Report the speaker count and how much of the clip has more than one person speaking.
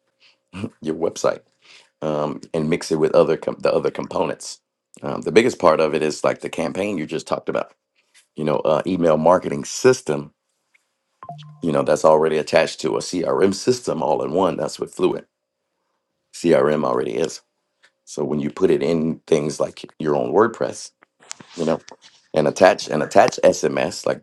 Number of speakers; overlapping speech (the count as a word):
one, no overlap